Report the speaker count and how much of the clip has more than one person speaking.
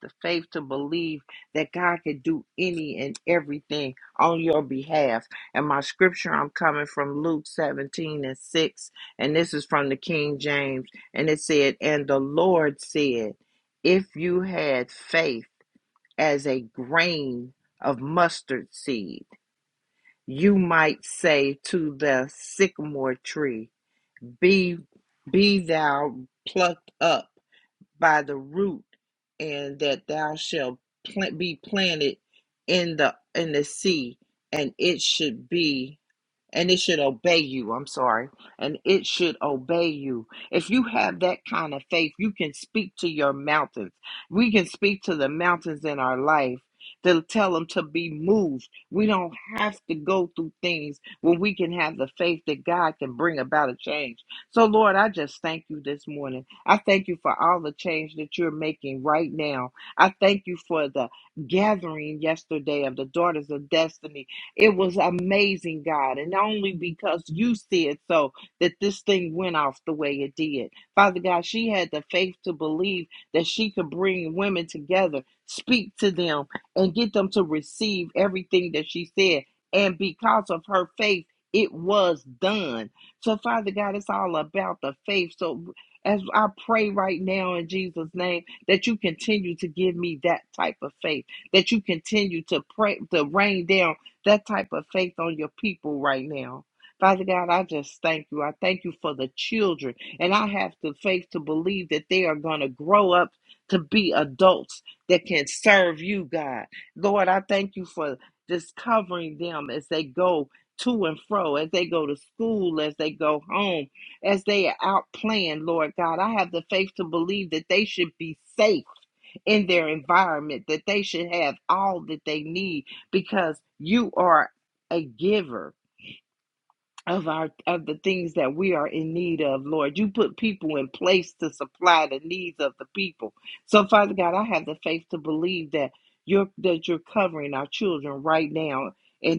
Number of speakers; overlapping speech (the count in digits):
1, no overlap